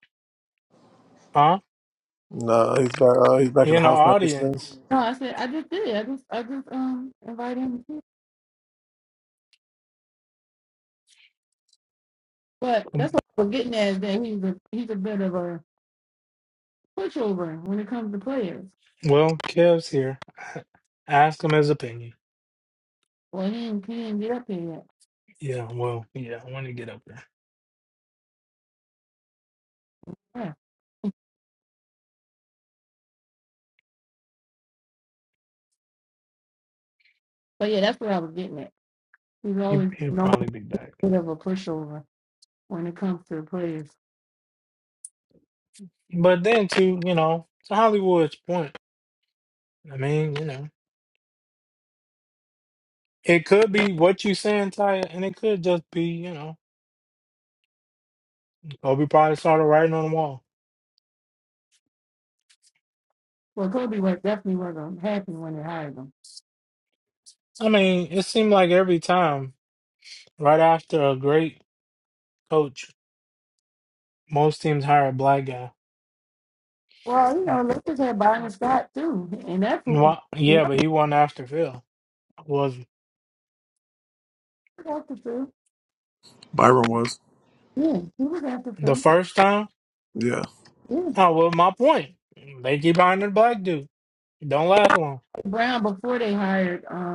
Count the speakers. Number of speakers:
3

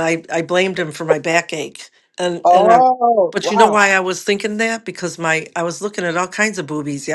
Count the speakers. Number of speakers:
2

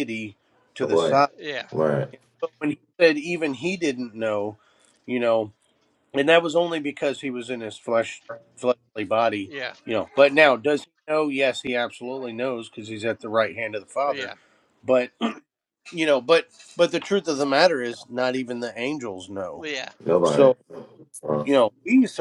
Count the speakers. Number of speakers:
3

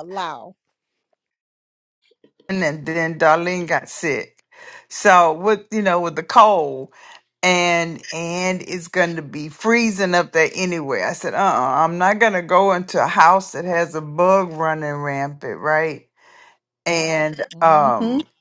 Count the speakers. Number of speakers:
2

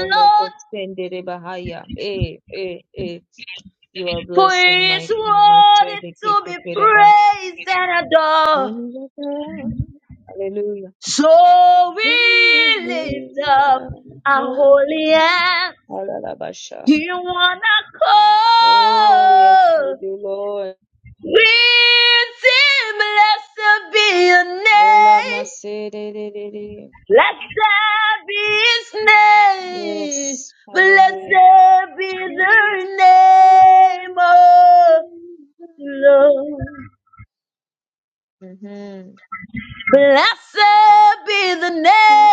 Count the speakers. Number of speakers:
2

